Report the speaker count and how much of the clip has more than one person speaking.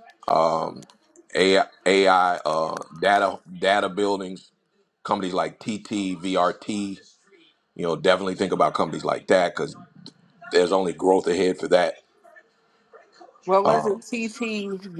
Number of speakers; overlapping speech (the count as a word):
two, about 3%